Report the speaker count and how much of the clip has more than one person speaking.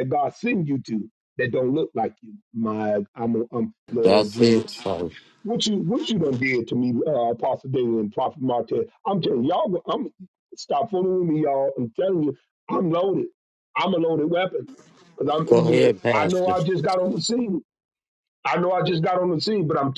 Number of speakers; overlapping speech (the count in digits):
2, about 9%